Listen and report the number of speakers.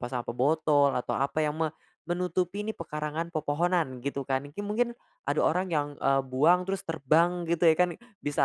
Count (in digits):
1